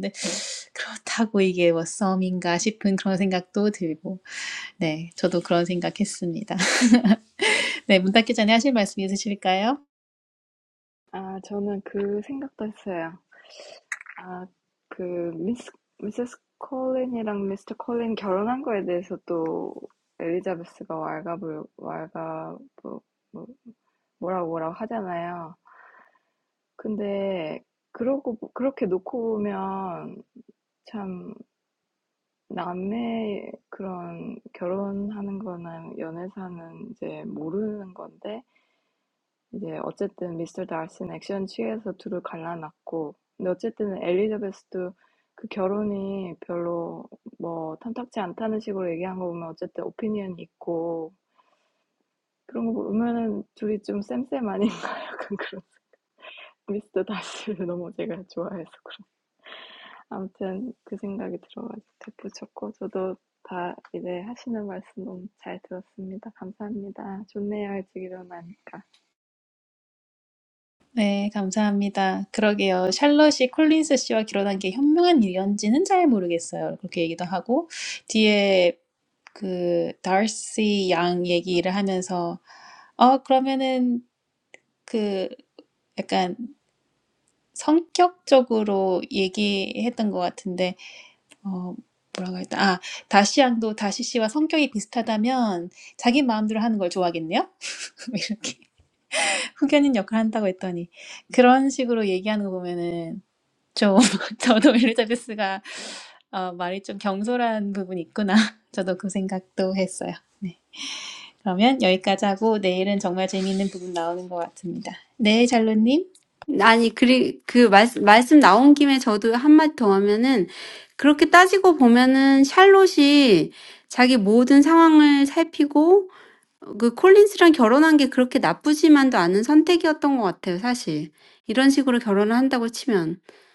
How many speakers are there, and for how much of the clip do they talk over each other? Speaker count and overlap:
3, no overlap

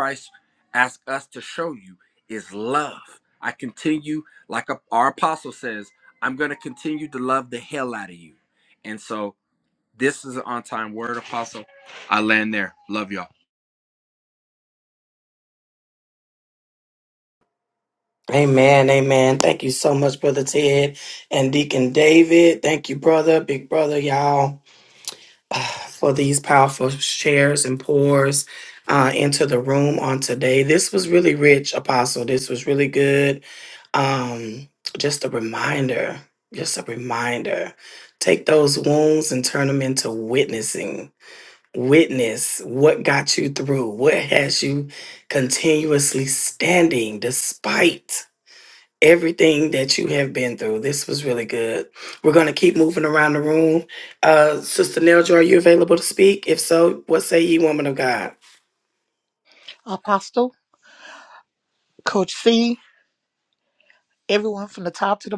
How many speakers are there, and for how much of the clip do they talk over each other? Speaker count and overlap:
3, no overlap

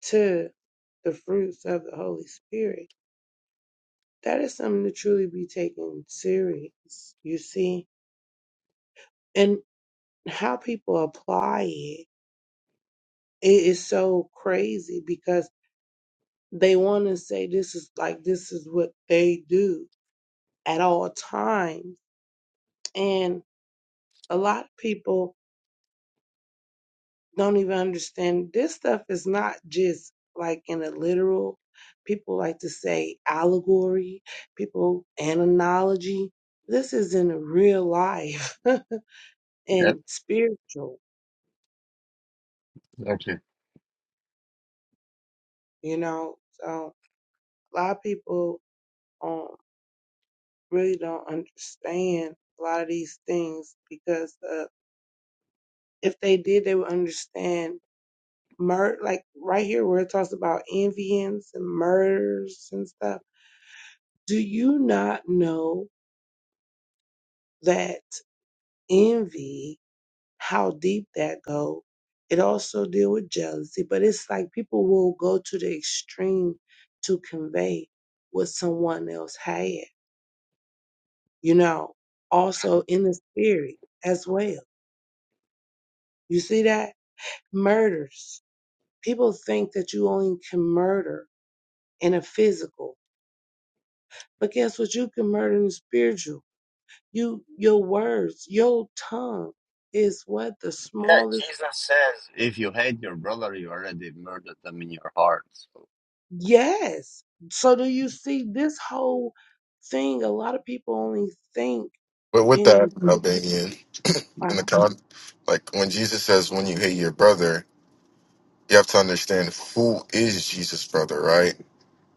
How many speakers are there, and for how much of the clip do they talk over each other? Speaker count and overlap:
3, about 1%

